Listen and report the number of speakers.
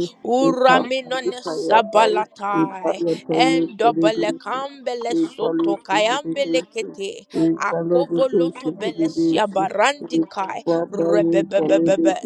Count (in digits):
2